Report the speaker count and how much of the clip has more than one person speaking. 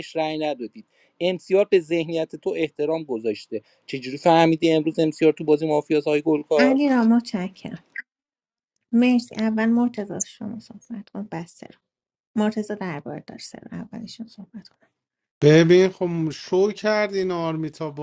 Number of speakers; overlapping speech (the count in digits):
3, about 1%